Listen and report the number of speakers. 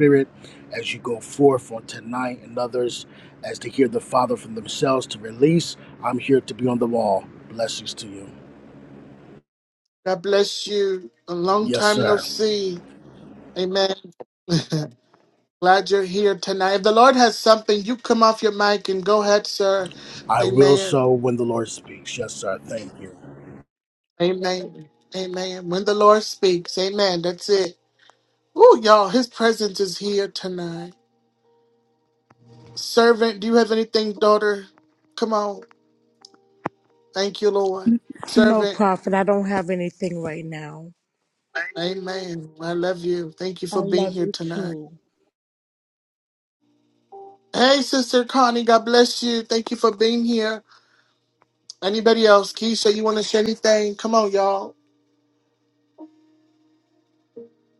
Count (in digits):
3